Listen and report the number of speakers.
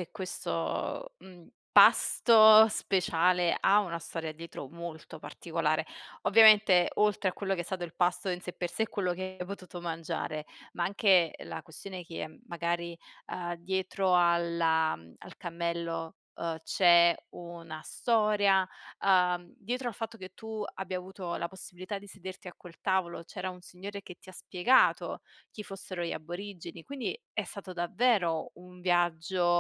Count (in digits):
1